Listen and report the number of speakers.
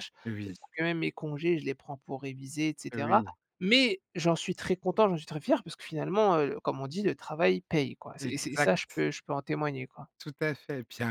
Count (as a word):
two